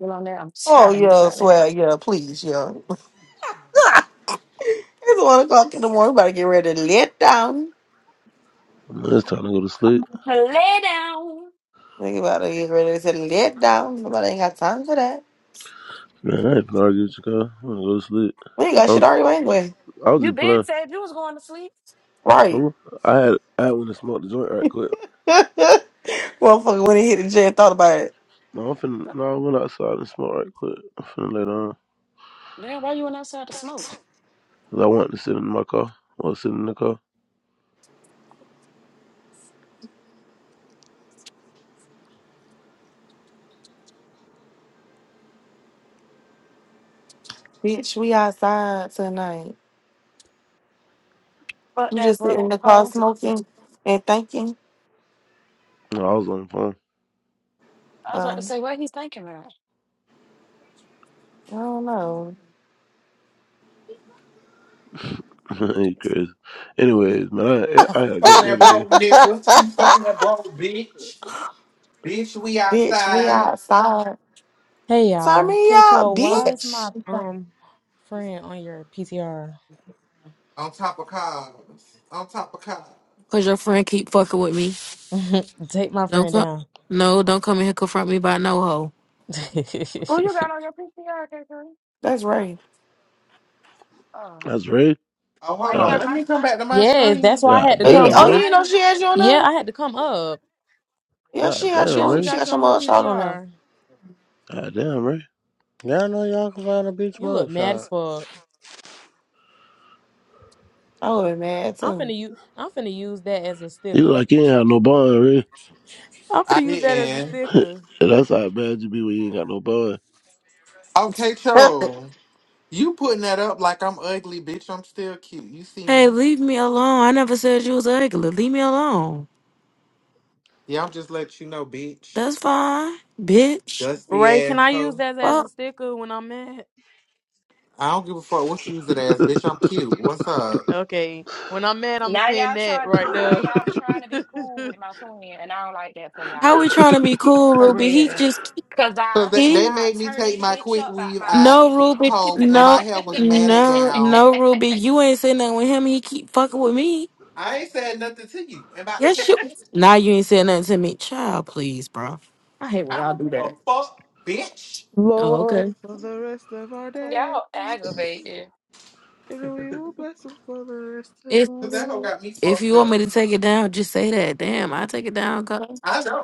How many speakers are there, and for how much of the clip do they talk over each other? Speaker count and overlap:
8, about 14%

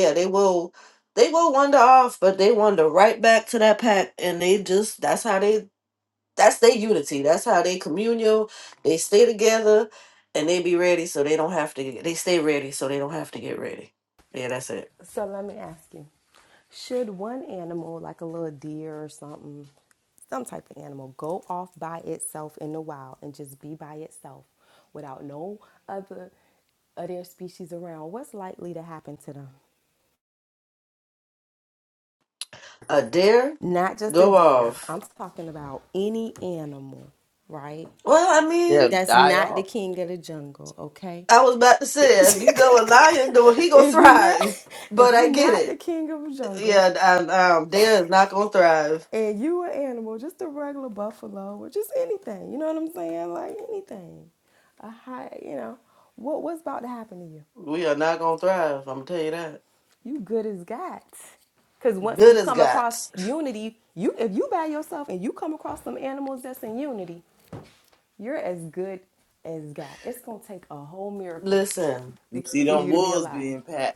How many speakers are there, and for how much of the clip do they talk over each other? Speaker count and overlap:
3, about 9%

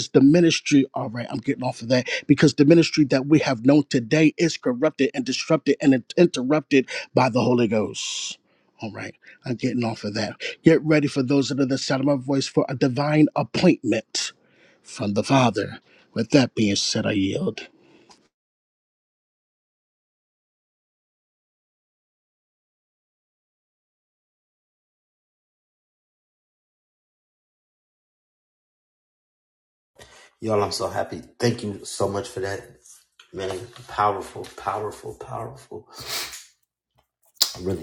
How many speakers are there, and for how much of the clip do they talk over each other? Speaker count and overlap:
2, no overlap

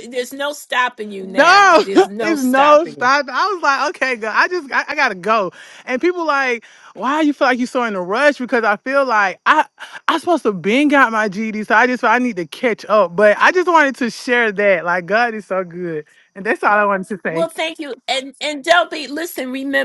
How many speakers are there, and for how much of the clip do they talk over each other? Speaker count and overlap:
2, about 8%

